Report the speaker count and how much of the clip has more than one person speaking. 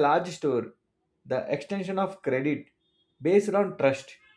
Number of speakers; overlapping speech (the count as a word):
one, no overlap